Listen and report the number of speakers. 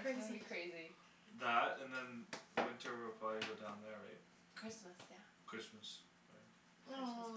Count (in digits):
3